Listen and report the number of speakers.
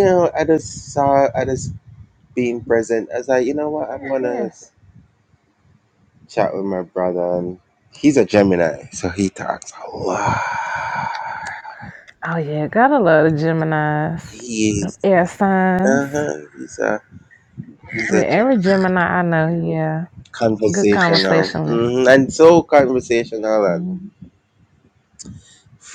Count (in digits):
2